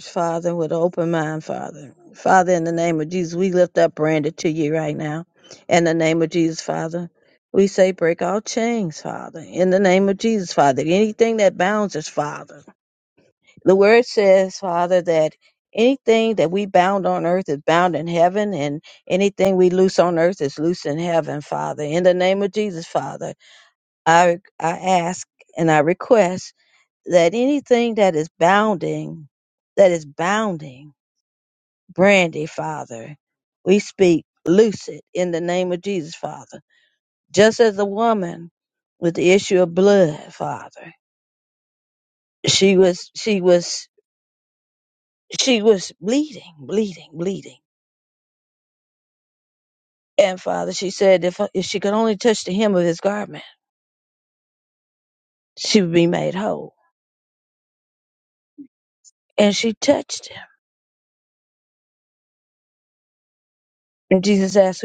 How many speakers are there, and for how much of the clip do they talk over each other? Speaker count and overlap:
one, no overlap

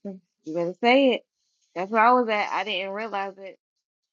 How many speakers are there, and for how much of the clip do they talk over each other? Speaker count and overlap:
one, no overlap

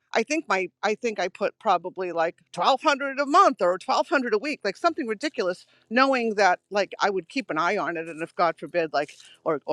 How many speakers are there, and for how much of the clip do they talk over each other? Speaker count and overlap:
one, no overlap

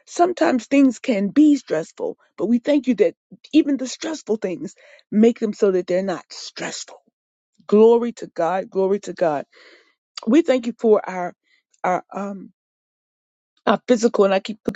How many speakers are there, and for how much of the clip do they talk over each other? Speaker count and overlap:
one, no overlap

